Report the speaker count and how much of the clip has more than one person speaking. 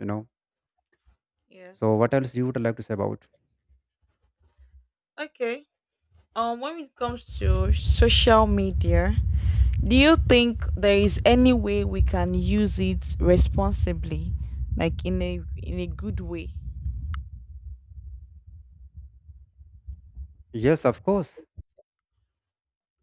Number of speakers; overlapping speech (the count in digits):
2, no overlap